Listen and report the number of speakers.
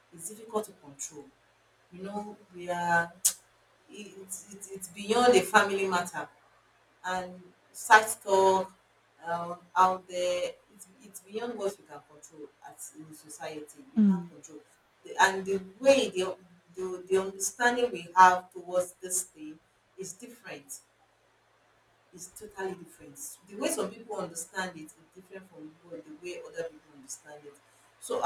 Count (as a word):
one